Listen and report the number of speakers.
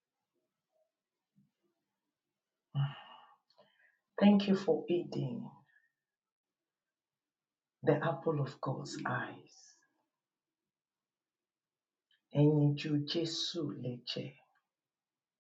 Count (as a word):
one